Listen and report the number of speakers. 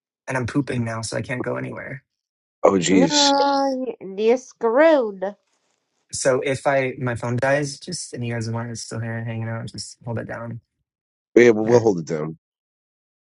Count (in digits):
3